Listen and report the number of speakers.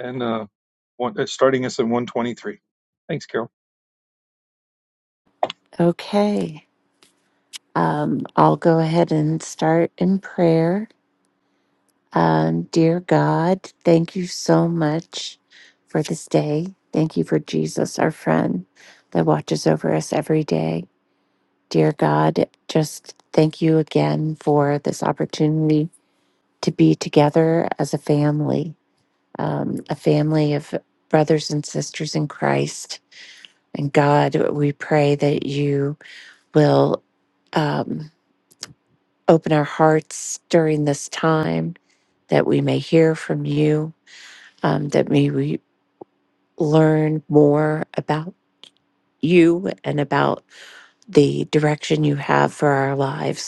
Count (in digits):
2